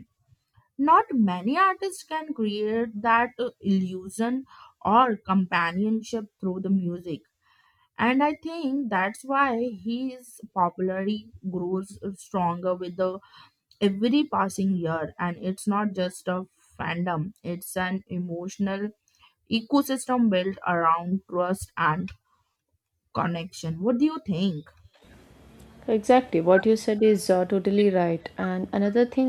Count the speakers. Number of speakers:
two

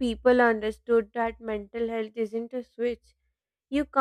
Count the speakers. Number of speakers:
one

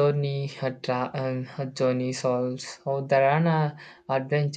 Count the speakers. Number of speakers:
one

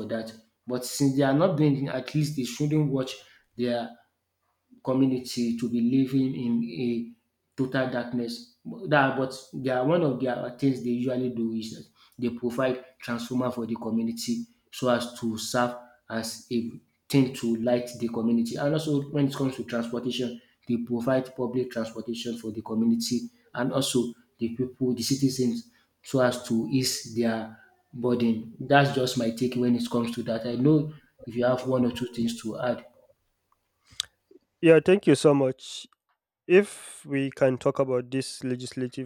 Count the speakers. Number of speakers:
two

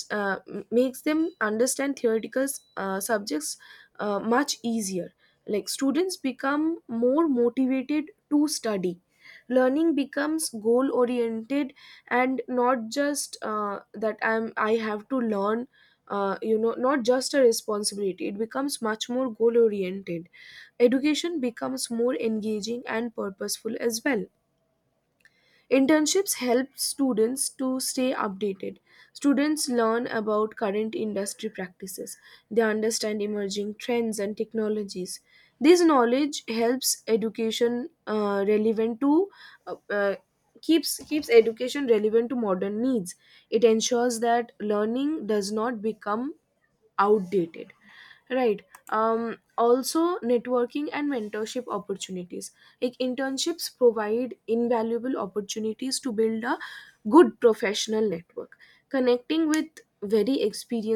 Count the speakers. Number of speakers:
one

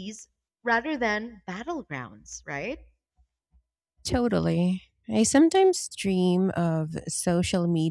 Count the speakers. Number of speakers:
two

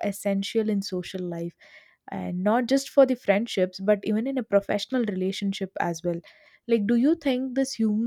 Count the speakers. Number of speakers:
one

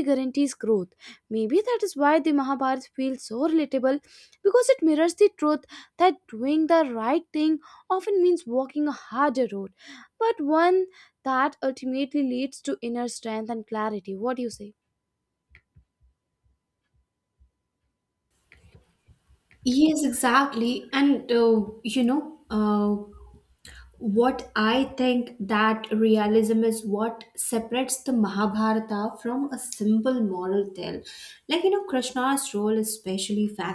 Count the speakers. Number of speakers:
two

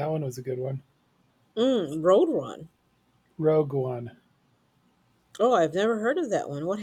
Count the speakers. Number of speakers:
two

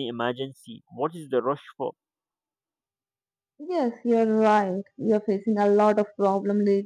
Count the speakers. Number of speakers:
two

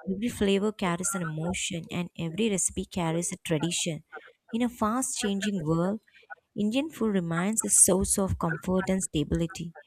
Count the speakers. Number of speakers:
one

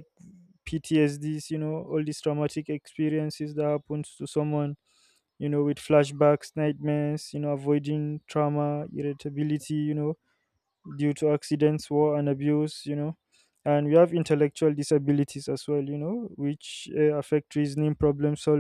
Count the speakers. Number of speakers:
one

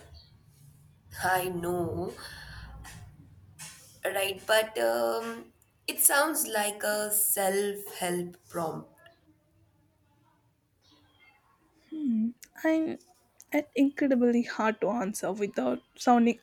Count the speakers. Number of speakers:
two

